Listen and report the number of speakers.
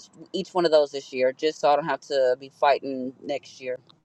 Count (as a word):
one